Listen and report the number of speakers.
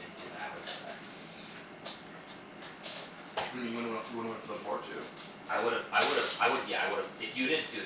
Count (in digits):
2